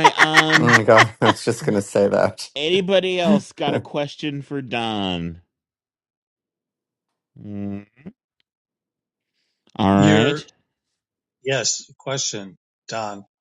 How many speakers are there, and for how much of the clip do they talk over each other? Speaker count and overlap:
three, about 5%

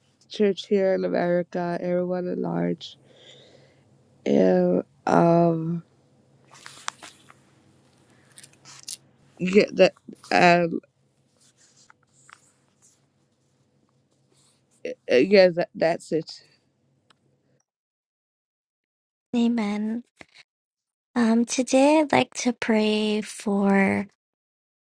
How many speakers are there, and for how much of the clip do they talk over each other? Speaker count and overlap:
two, no overlap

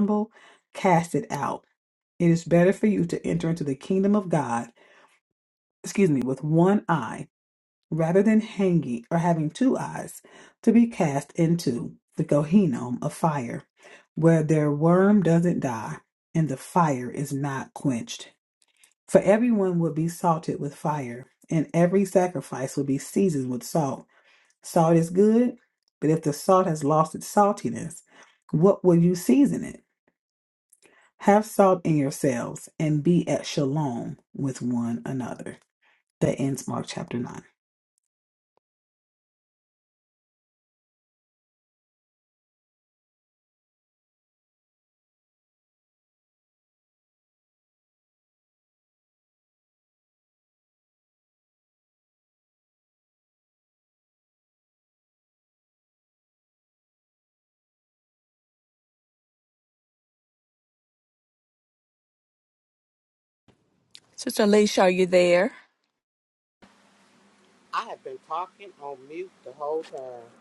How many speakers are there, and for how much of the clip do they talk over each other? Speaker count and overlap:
three, no overlap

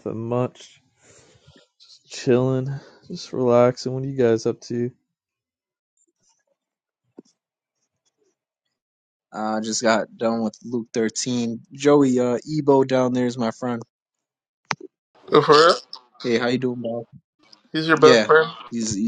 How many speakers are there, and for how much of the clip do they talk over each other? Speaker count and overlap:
three, about 2%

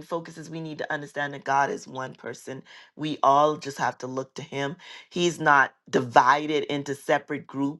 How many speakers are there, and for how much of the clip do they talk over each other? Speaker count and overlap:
one, no overlap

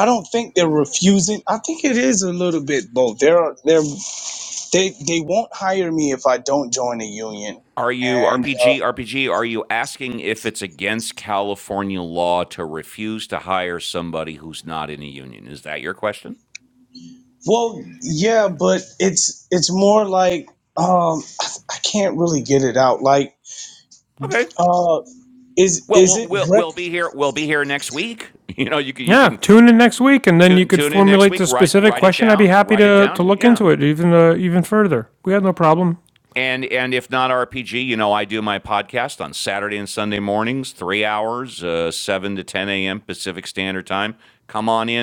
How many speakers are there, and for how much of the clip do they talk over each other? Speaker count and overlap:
three, about 11%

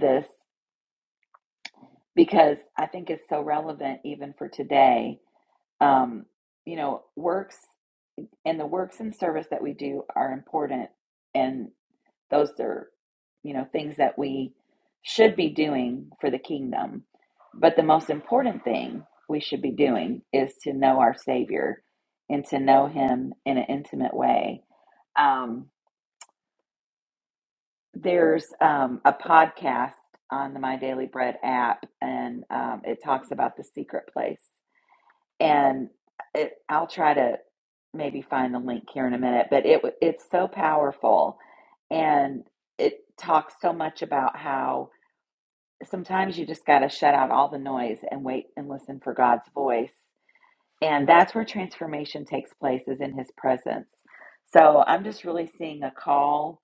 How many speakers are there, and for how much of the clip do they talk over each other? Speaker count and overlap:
one, no overlap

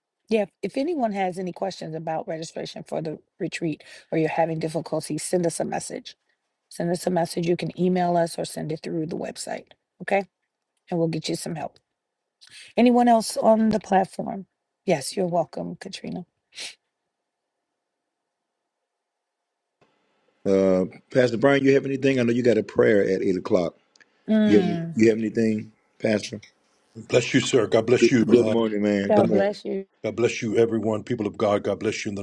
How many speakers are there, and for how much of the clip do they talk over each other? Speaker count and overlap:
three, about 5%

